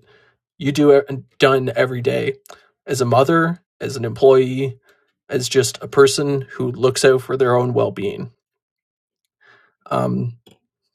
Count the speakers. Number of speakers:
1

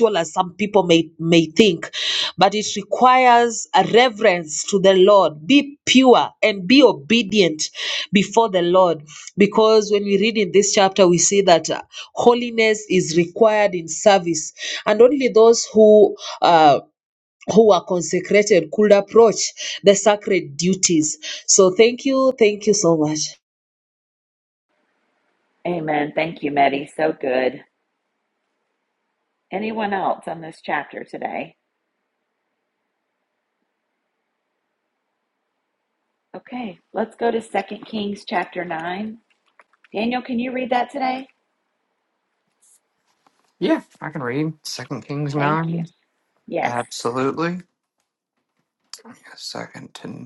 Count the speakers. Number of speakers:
3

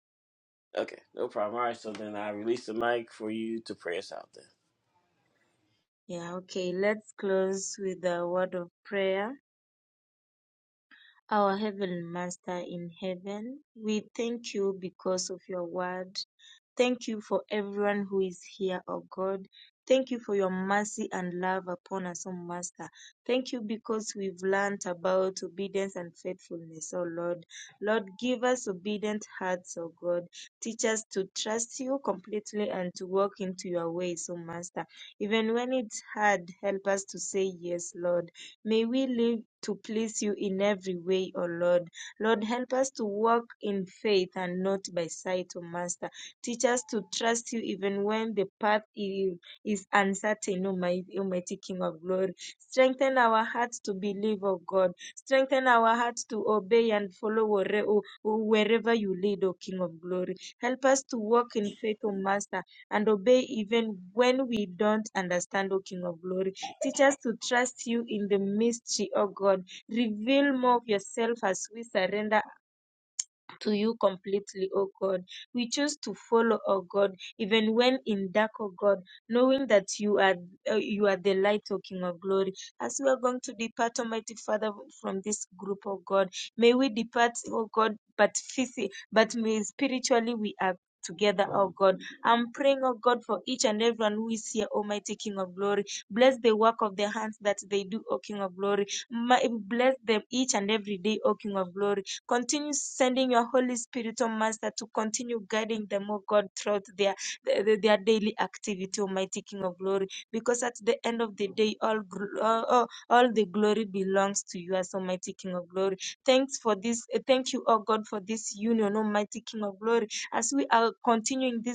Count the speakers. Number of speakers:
2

